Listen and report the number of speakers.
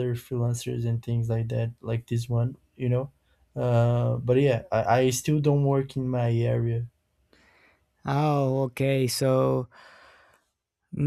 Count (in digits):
2